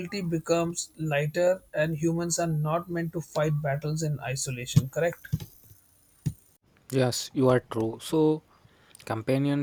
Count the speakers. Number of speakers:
two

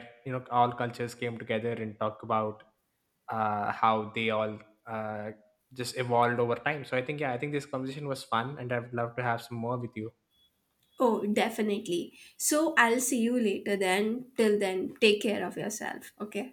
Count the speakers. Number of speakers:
two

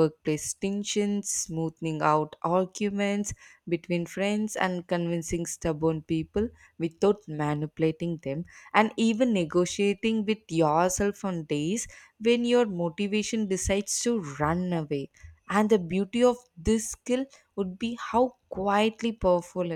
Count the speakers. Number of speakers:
one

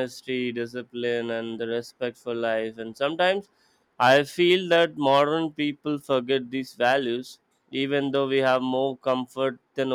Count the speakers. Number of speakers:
one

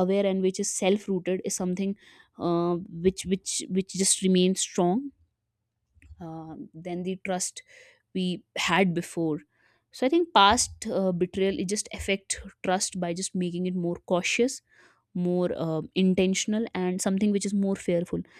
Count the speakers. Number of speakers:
one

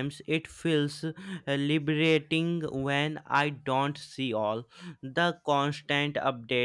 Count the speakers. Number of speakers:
one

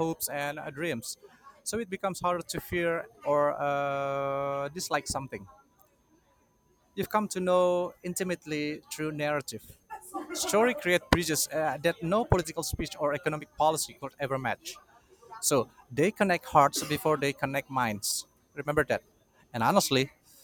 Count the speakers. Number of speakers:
one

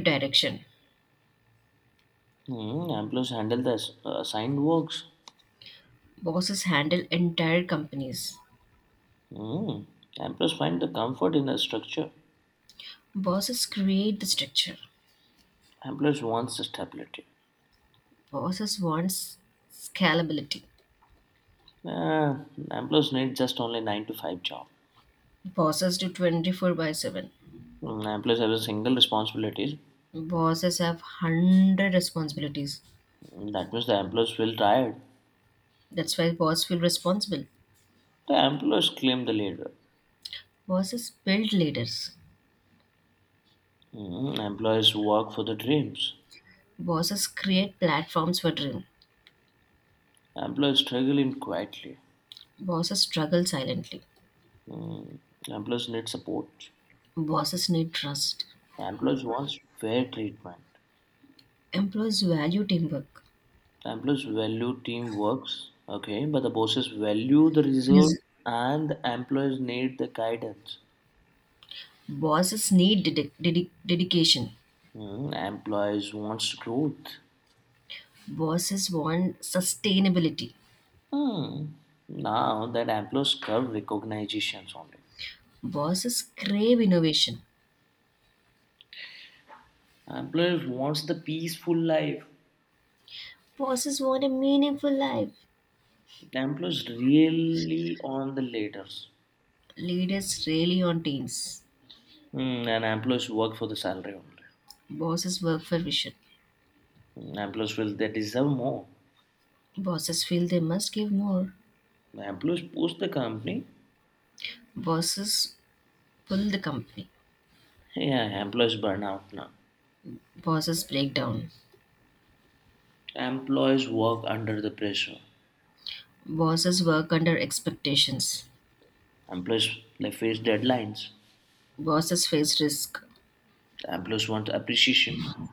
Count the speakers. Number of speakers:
two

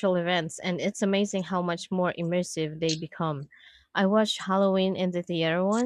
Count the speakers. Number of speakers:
one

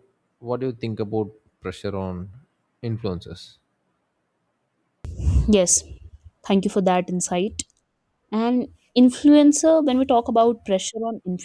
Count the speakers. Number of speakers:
two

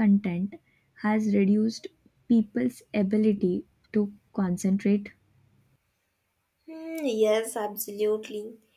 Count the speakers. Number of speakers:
two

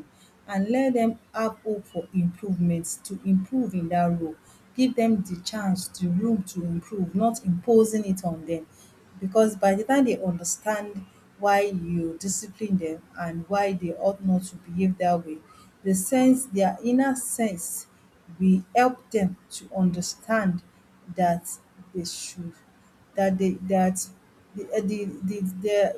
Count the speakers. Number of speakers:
one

